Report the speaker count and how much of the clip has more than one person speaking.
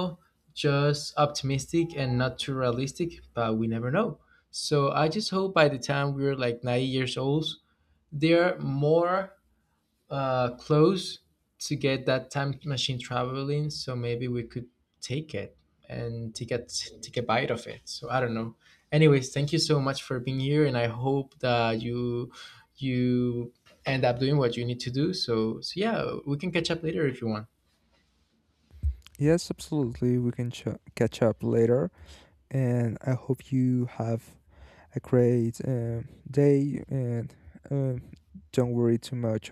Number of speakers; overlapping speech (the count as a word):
two, no overlap